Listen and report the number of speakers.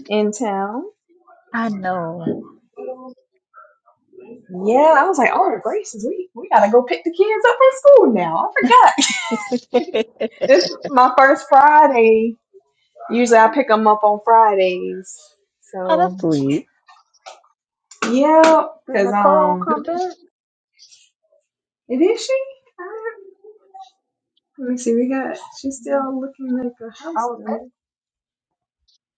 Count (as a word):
three